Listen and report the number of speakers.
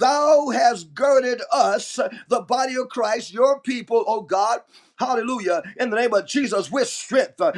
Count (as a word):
one